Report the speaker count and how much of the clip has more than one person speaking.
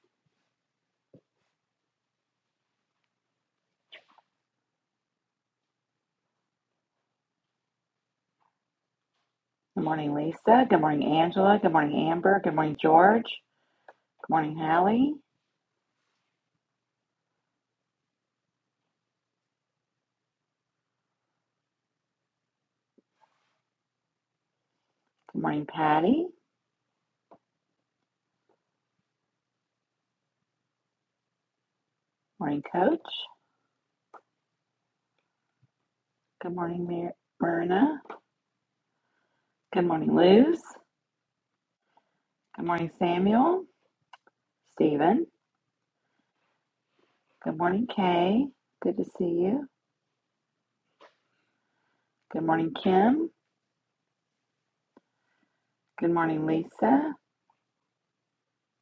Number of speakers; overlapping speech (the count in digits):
1, no overlap